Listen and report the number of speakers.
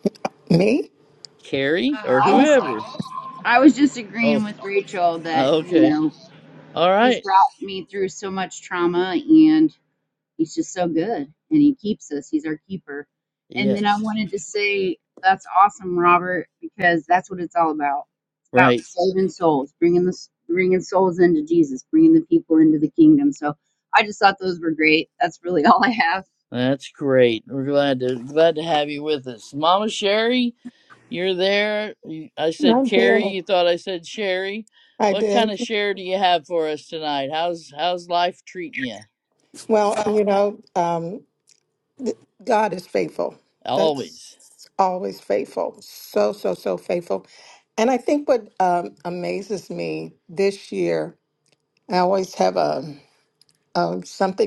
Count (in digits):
3